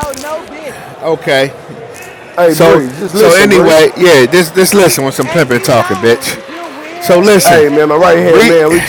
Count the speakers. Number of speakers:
3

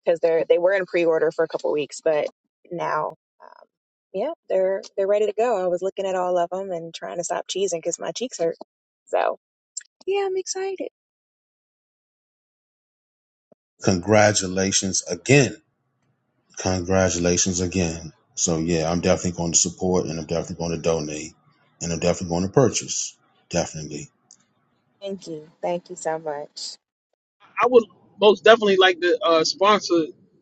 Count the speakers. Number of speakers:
3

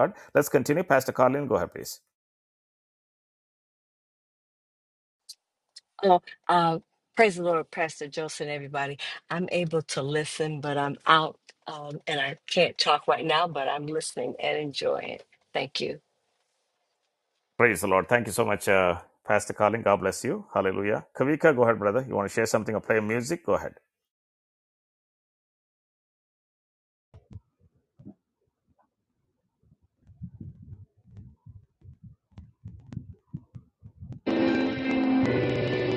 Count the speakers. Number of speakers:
2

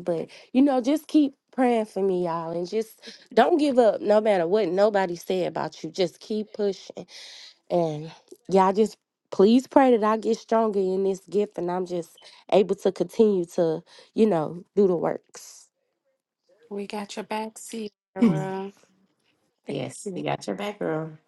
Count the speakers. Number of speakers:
3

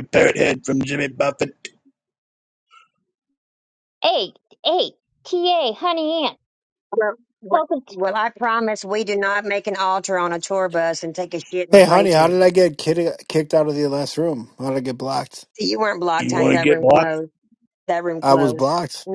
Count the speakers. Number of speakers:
4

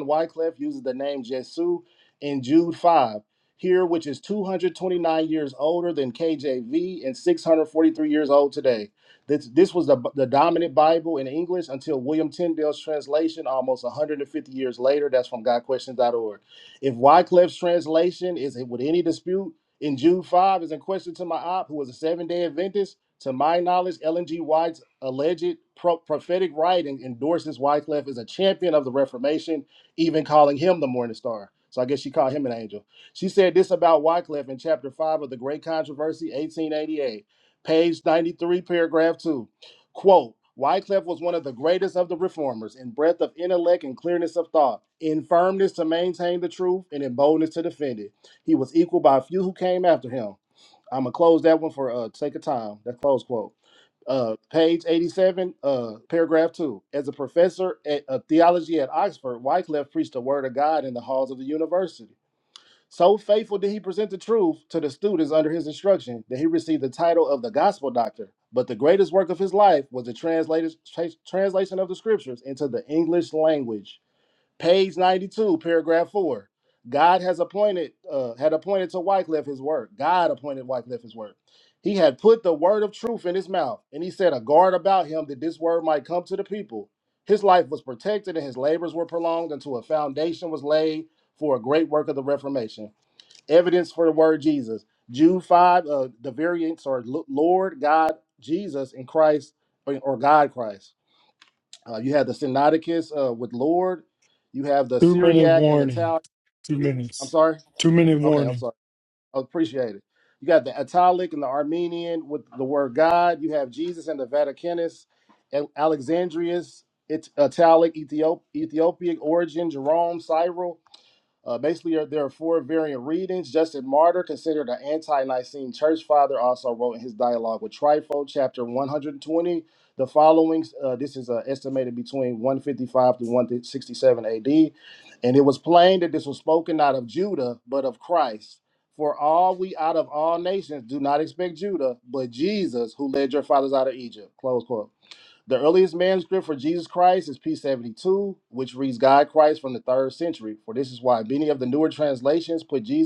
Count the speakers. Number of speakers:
2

